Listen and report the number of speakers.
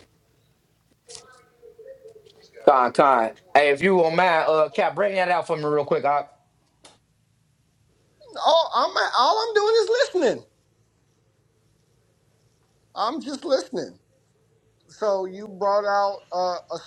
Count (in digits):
2